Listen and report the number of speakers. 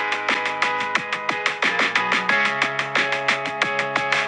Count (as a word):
zero